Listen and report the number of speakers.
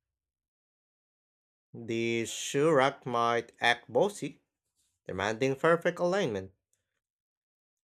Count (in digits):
1